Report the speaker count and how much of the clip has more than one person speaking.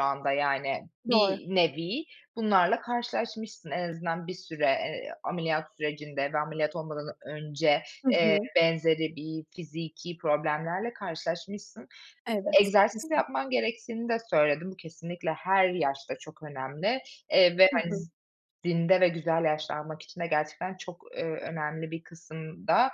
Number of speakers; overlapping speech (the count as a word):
two, about 5%